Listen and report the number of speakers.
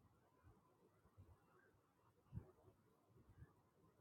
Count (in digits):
0